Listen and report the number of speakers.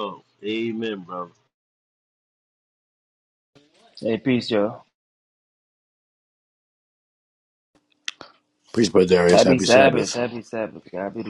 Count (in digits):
3